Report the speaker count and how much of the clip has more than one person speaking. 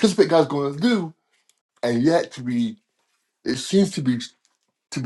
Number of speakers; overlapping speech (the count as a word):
one, no overlap